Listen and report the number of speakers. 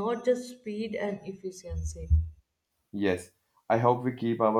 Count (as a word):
two